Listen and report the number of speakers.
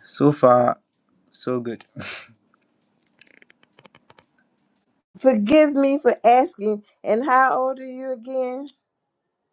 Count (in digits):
2